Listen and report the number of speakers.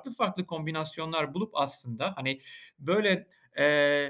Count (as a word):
one